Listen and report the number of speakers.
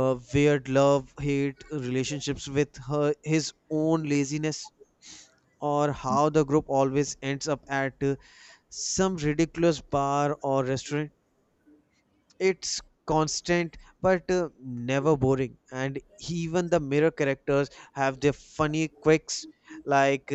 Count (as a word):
one